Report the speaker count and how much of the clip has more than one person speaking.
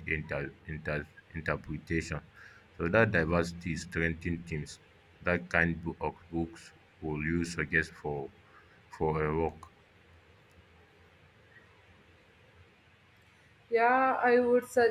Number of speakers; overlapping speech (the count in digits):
2, no overlap